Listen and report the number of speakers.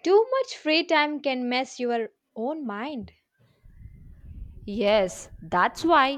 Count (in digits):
2